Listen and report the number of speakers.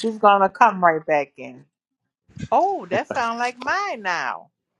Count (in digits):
1